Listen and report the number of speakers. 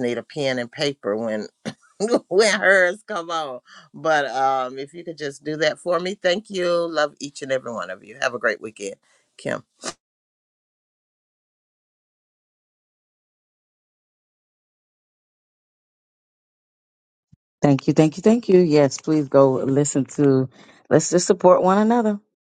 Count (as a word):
two